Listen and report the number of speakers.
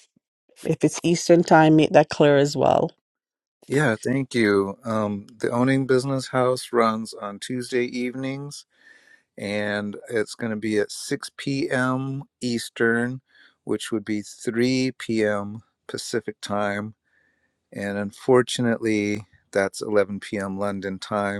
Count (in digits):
2